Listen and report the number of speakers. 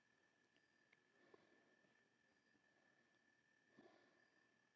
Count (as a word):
zero